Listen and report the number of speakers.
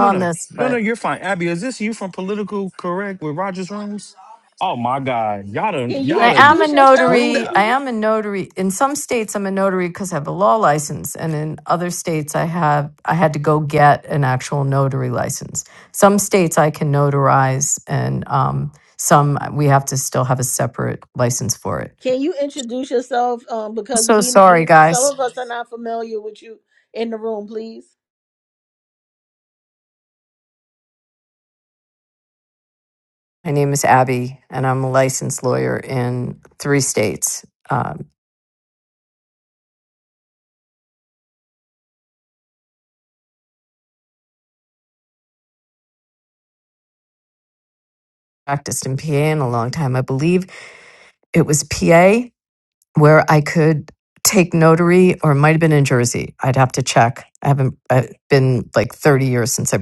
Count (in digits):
3